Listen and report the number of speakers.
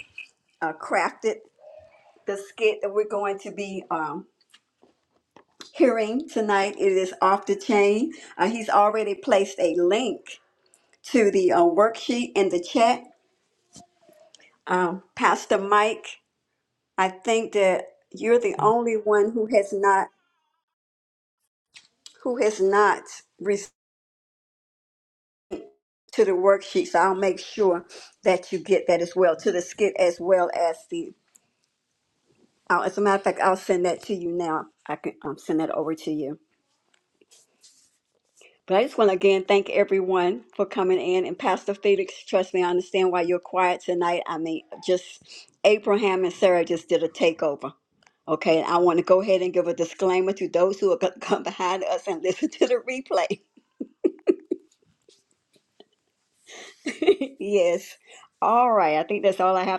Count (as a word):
one